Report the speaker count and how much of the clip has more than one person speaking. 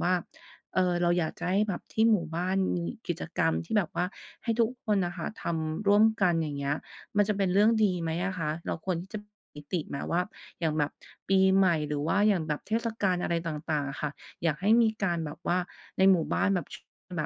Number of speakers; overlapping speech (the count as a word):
one, no overlap